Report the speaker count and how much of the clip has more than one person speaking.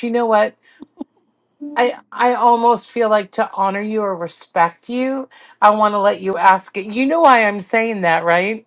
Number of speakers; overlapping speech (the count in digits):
1, no overlap